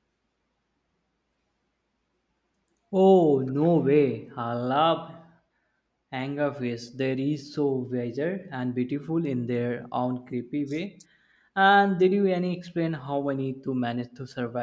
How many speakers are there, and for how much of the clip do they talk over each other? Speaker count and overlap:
1, no overlap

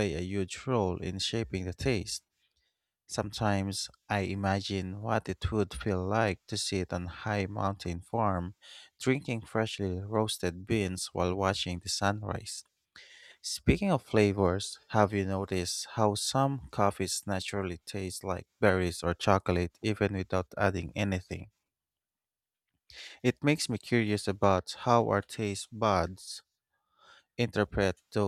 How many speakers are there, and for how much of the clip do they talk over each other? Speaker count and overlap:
1, no overlap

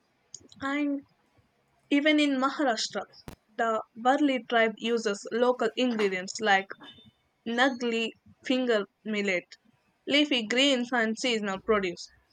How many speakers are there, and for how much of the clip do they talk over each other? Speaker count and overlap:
1, no overlap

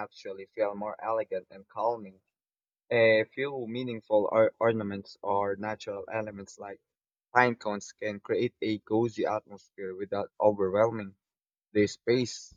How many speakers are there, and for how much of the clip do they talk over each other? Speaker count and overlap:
1, no overlap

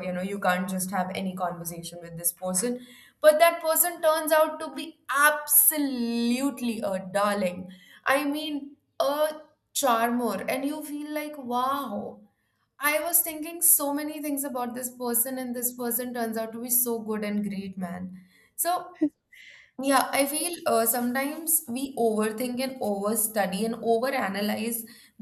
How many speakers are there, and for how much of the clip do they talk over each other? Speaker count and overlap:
1, no overlap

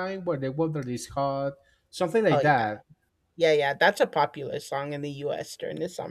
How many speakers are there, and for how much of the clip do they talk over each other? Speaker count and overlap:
2, about 7%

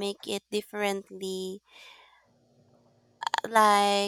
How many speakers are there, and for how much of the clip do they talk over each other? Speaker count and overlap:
1, no overlap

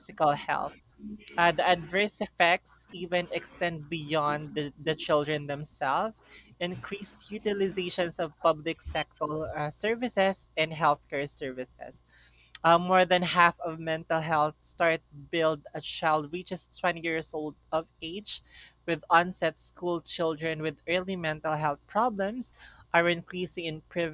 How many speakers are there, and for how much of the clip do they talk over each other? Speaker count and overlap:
1, no overlap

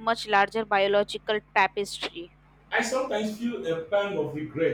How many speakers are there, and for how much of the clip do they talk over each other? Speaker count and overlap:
2, no overlap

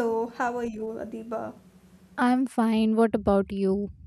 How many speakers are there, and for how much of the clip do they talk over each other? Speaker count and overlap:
2, no overlap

